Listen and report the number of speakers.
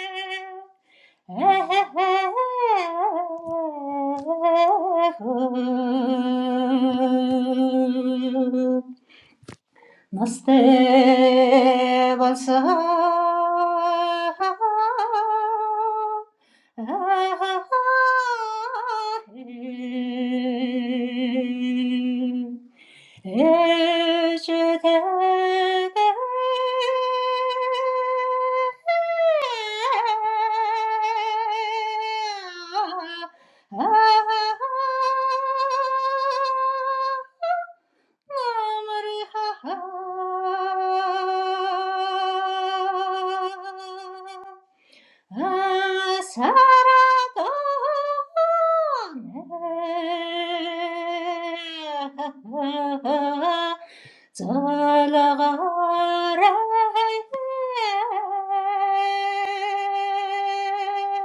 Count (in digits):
1